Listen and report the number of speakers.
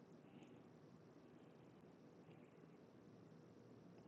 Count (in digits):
0